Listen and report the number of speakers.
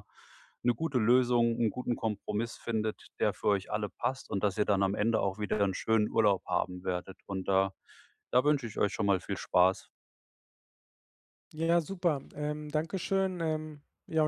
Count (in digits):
2